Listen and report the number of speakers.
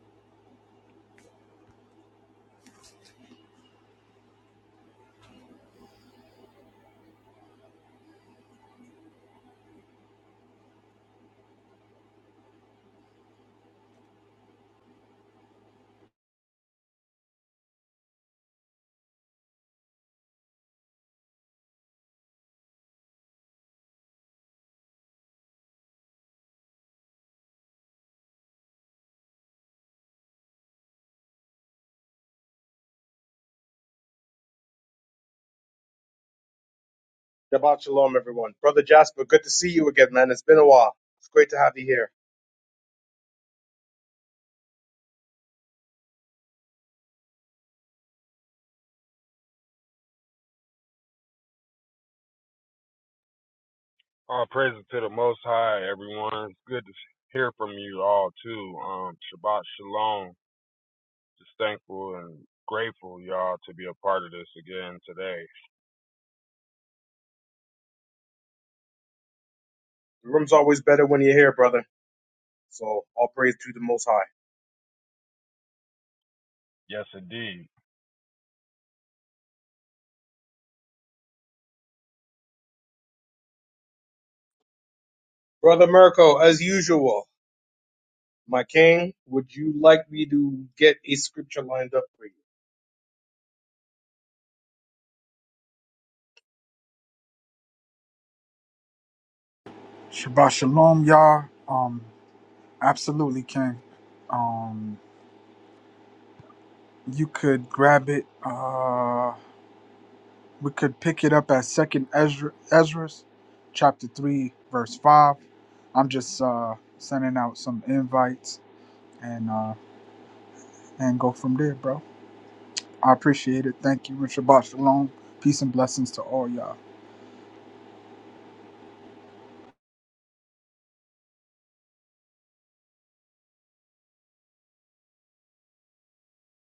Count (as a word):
three